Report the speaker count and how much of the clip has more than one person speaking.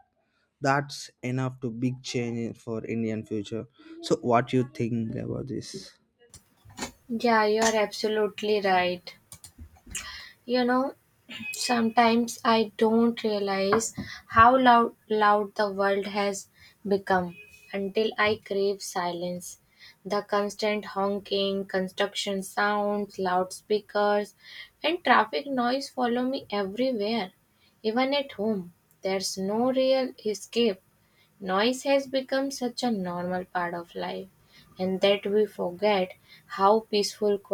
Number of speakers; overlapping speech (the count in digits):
2, no overlap